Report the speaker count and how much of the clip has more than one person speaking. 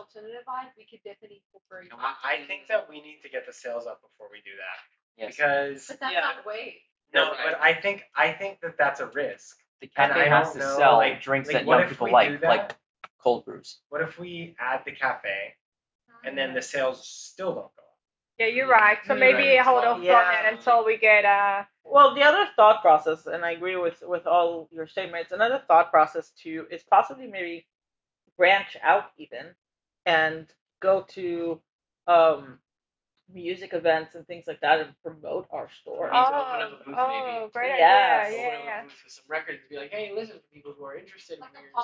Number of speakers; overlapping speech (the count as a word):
six, about 26%